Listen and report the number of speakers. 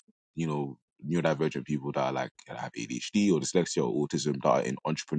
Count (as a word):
one